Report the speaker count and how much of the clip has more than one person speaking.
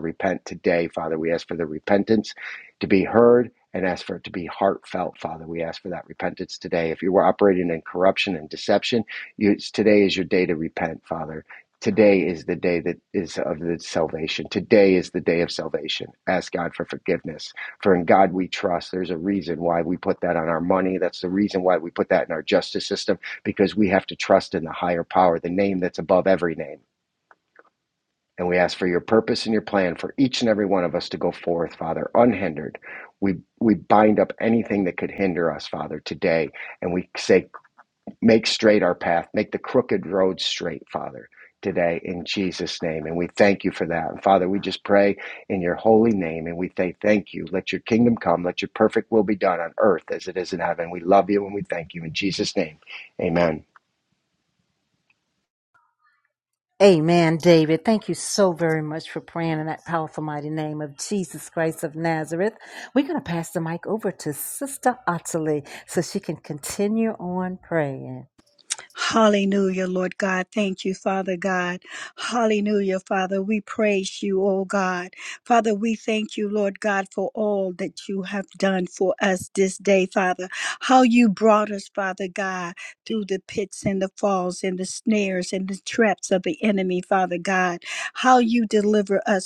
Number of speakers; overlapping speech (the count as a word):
three, no overlap